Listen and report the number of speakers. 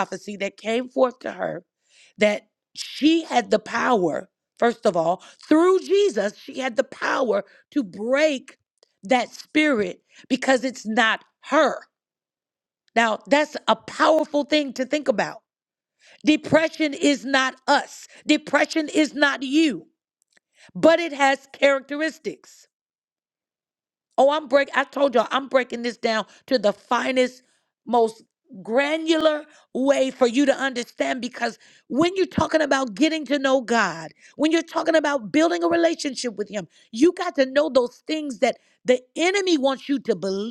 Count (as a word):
one